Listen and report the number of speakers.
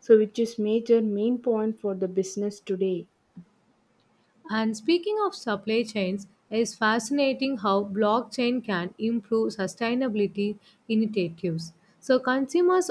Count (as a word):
two